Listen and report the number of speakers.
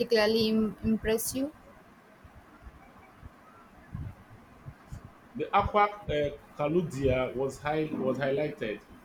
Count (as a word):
two